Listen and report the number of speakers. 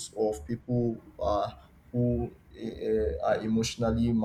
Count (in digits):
1